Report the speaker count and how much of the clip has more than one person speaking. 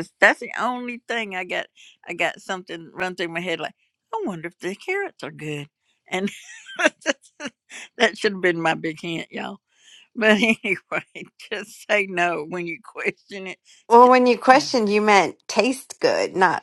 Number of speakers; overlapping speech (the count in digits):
2, about 1%